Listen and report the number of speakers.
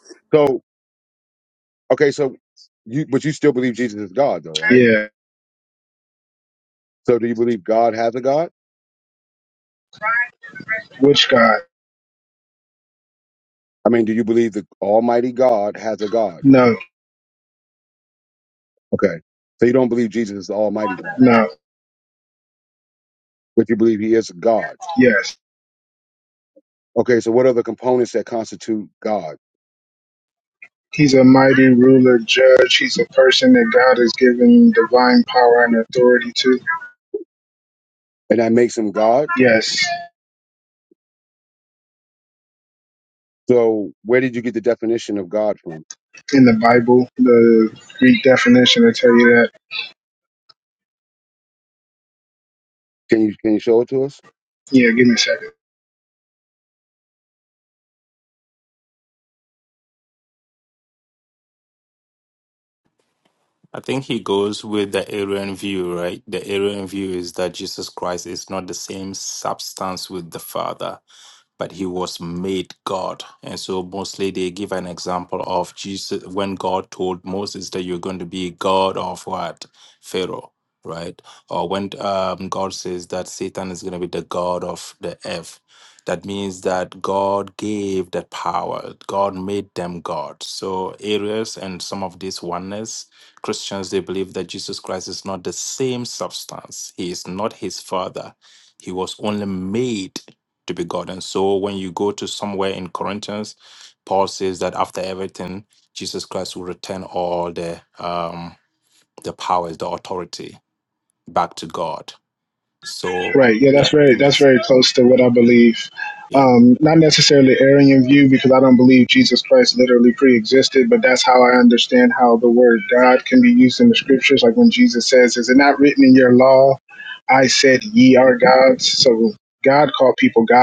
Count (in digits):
3